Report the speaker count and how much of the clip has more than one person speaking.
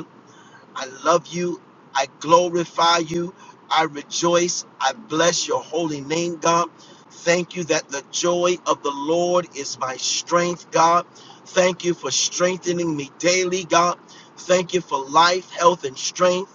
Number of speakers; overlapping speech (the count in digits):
1, no overlap